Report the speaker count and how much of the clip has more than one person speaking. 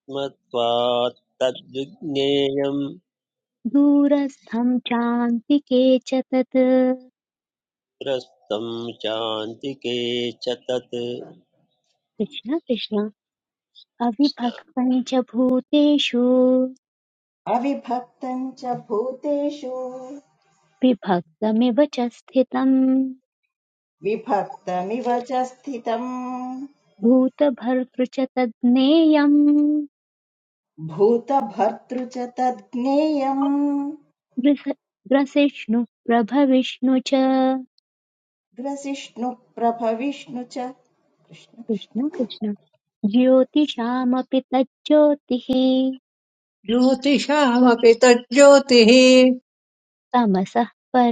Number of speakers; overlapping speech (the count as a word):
four, about 1%